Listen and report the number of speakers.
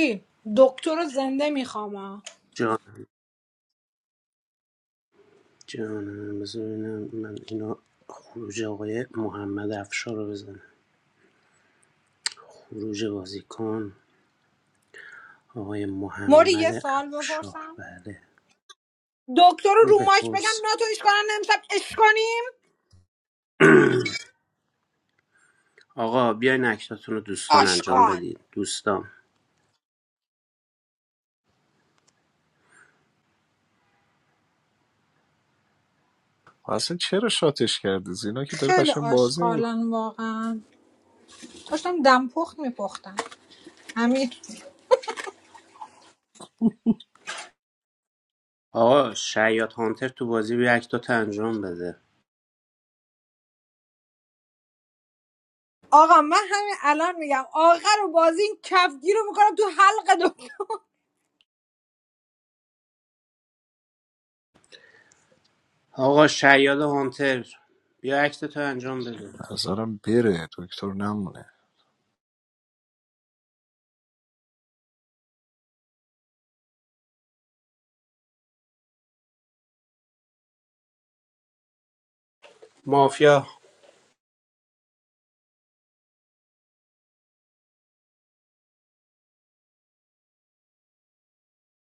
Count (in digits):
3